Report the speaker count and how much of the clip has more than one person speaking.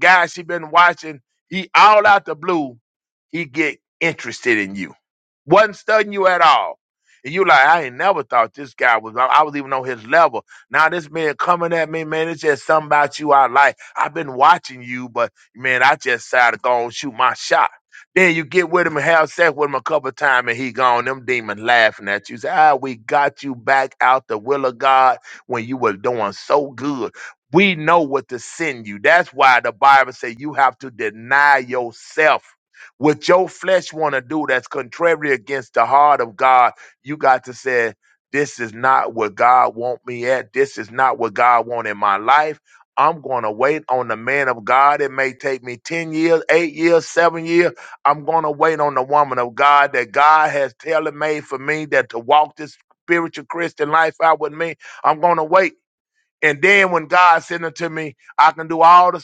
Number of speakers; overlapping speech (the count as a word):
one, no overlap